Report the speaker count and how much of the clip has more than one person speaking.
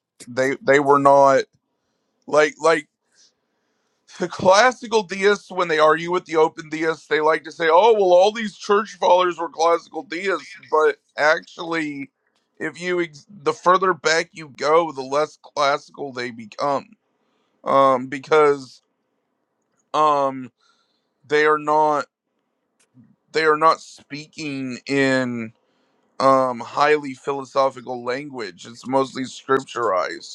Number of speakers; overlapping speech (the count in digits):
1, no overlap